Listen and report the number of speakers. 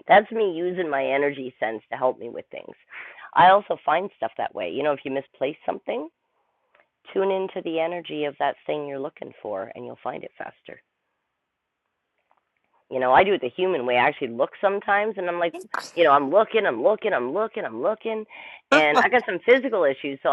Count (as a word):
one